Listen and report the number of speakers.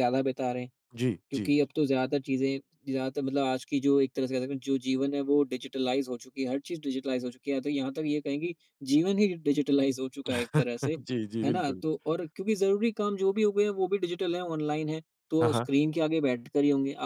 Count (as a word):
two